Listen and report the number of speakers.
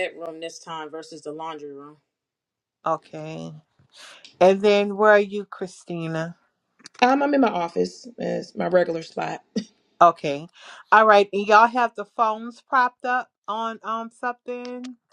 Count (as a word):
three